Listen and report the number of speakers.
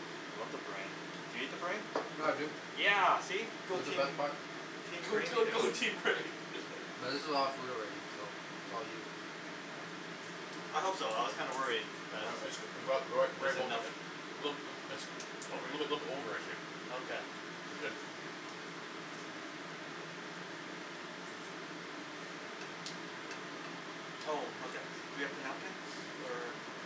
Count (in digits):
4